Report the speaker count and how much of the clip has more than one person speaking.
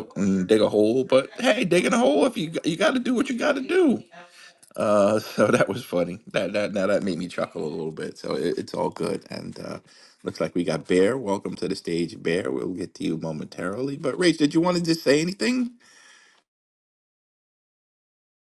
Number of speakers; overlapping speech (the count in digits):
1, no overlap